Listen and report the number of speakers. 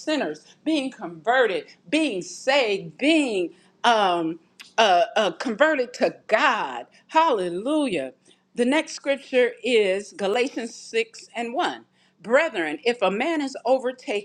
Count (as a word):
one